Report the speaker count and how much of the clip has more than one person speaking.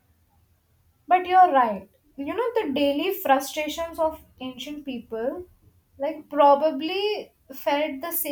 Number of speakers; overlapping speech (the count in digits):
1, no overlap